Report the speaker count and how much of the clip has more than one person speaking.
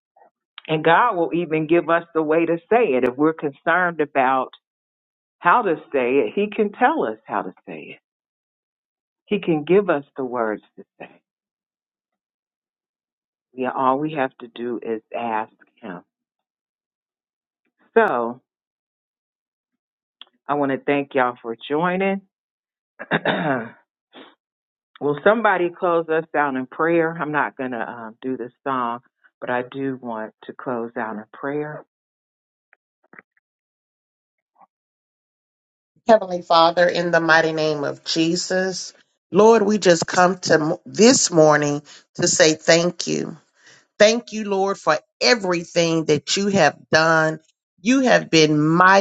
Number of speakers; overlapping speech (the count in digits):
2, no overlap